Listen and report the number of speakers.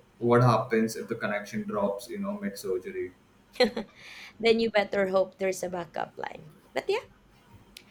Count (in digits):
2